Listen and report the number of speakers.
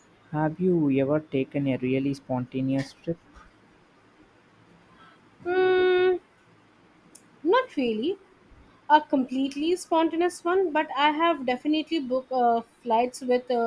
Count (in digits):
2